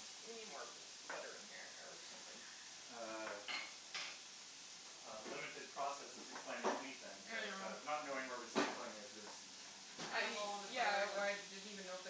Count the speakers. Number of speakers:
three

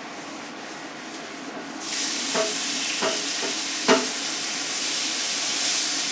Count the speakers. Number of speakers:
zero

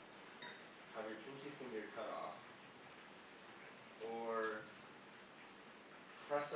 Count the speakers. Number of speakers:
one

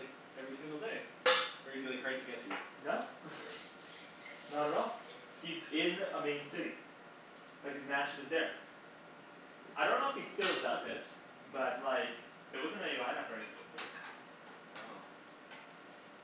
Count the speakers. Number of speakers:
two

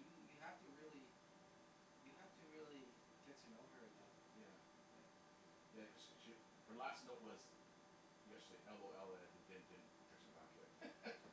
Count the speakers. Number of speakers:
two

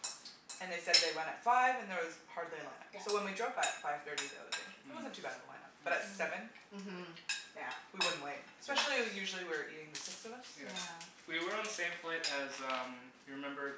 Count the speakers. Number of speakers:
three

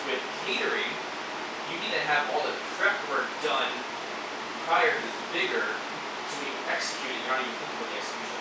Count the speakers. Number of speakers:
one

